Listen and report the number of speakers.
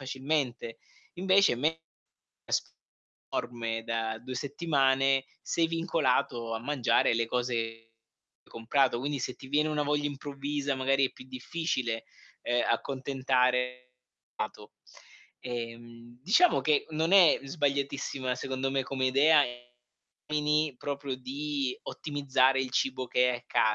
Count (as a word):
one